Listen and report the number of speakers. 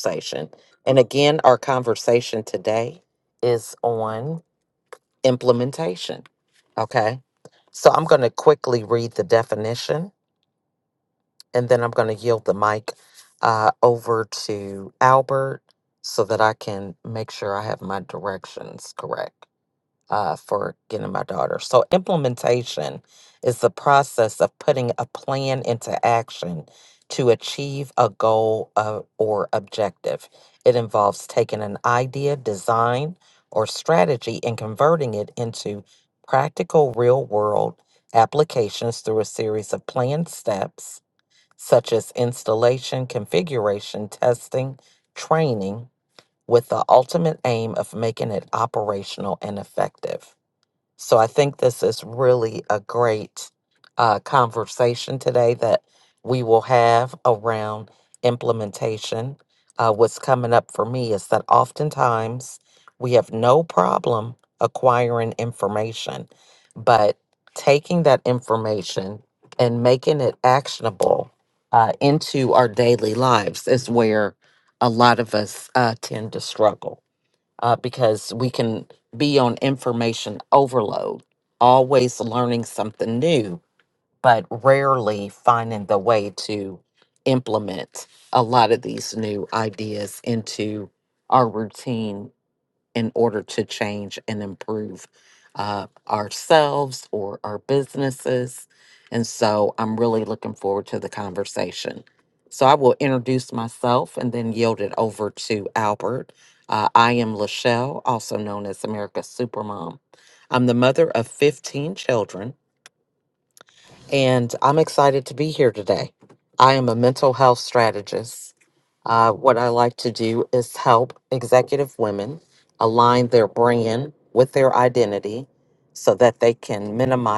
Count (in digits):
1